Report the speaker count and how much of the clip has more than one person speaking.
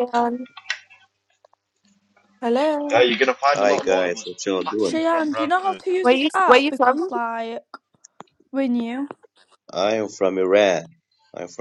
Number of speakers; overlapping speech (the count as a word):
four, about 30%